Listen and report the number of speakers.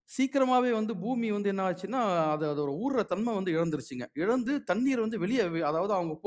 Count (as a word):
one